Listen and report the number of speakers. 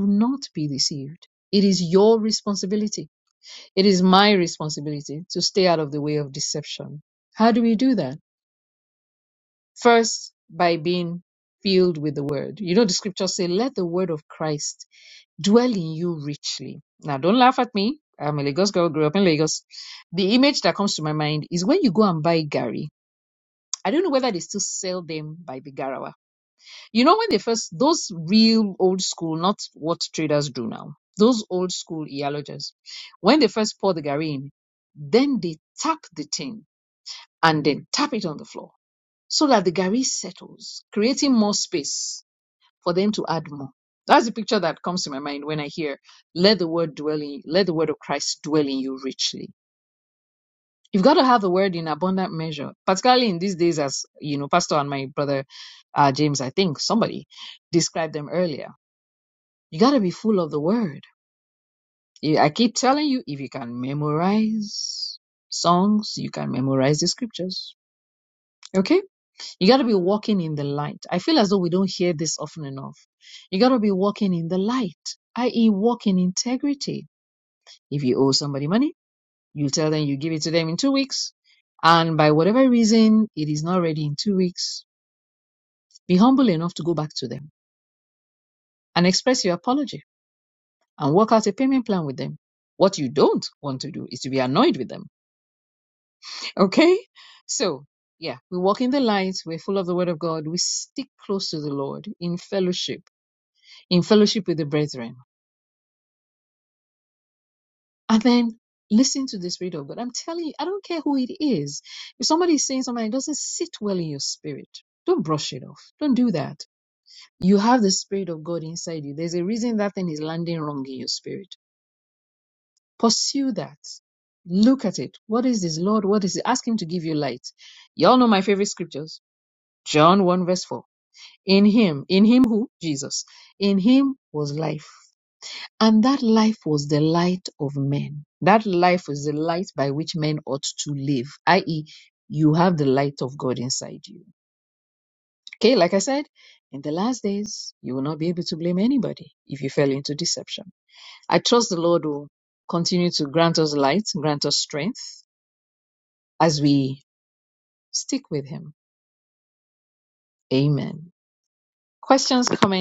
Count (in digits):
1